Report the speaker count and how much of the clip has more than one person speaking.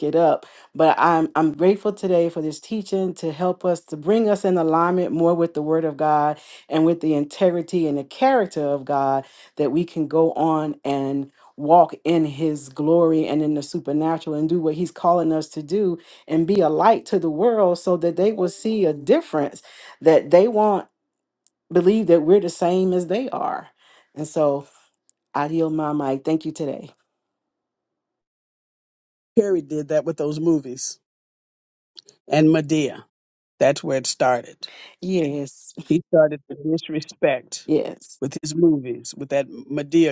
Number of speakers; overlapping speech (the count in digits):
2, no overlap